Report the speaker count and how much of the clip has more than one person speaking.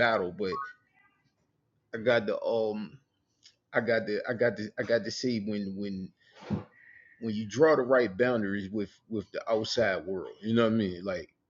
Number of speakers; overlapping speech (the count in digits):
1, no overlap